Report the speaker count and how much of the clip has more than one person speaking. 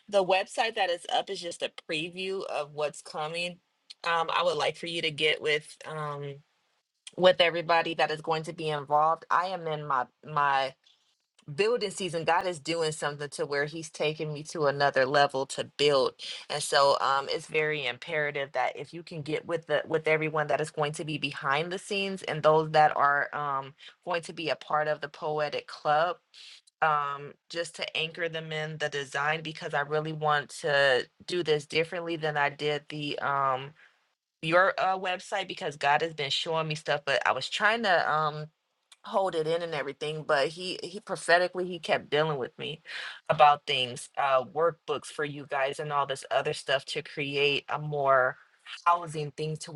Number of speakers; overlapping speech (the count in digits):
1, no overlap